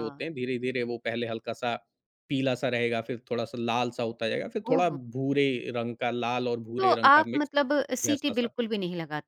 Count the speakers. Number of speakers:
2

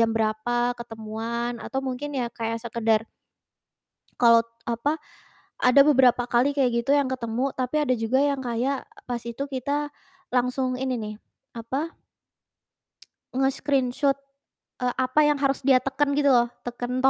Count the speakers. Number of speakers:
1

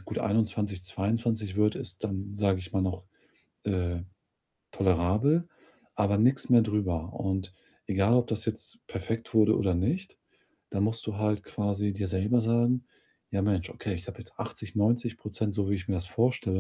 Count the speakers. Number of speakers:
1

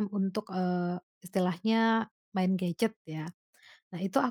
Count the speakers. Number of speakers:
1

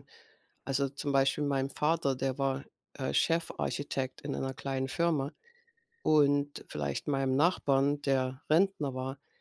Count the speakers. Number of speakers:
1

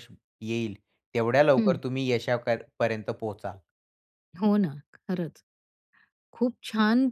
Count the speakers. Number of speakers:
2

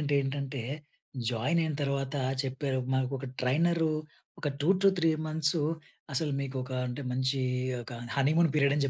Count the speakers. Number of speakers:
1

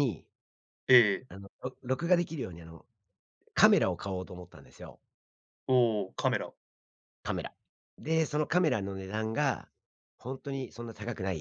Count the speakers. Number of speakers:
2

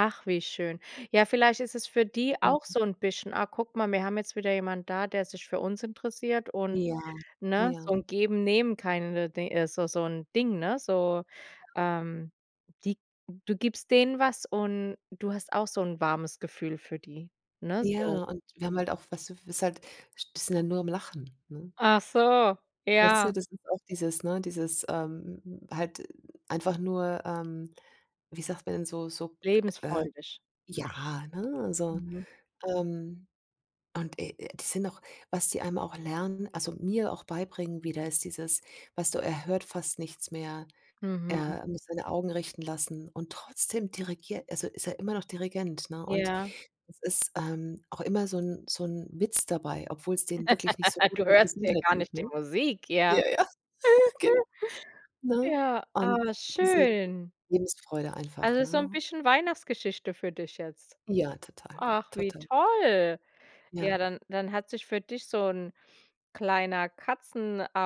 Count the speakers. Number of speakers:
2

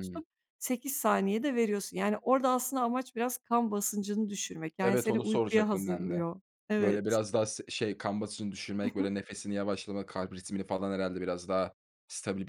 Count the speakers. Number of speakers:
2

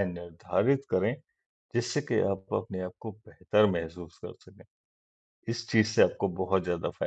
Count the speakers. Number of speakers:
1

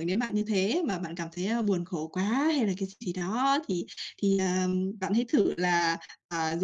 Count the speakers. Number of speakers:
1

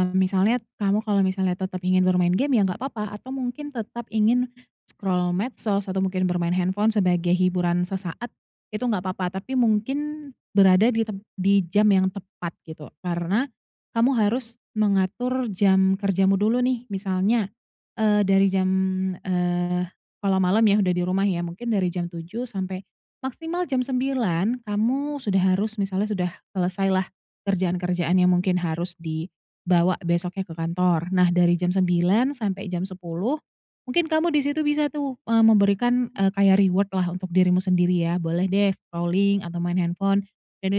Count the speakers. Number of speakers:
1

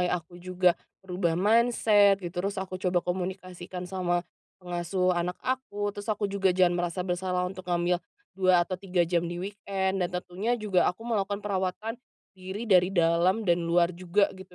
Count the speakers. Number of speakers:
1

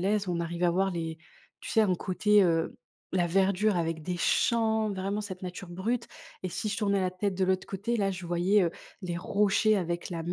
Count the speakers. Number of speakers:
1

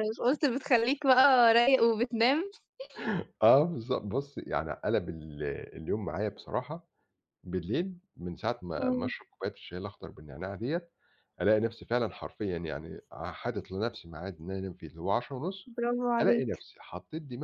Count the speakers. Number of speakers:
2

